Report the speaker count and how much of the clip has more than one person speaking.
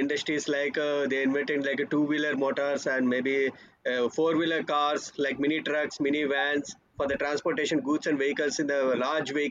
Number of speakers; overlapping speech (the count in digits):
1, no overlap